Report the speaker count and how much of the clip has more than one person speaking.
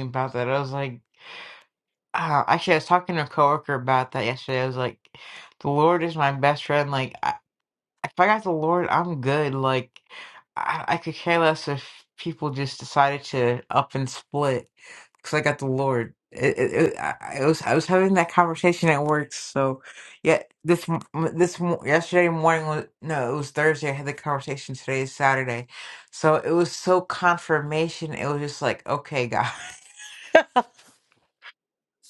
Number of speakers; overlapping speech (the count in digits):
1, no overlap